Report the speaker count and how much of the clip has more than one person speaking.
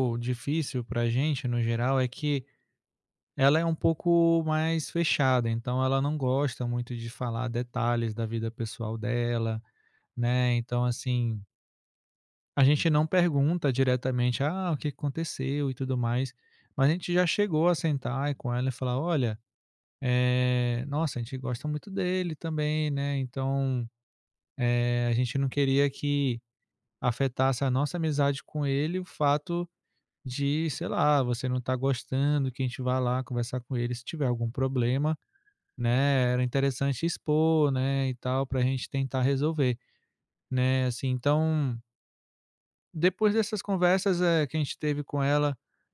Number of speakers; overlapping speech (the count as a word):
one, no overlap